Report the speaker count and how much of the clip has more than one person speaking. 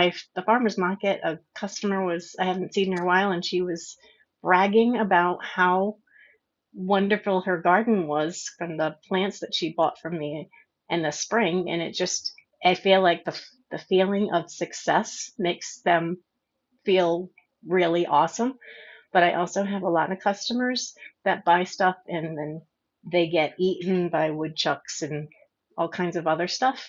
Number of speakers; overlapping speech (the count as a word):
one, no overlap